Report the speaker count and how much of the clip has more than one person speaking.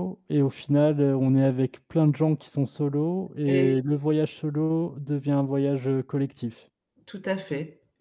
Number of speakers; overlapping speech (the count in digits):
2, about 4%